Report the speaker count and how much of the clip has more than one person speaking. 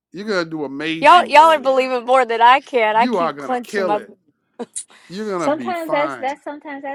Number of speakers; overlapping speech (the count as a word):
three, about 38%